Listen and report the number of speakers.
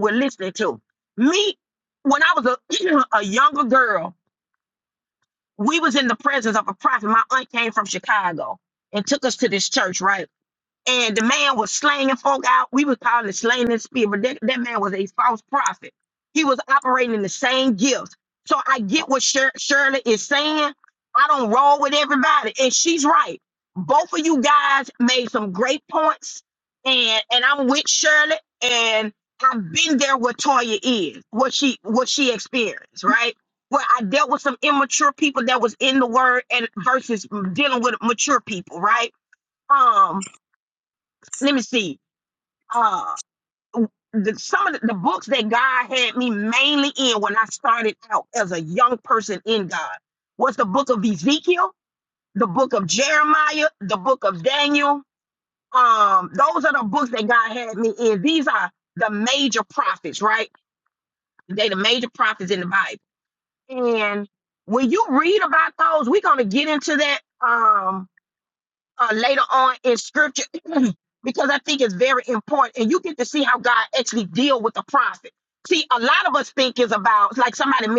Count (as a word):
one